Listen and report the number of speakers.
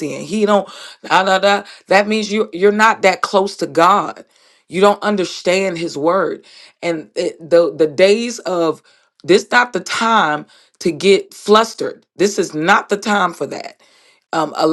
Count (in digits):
1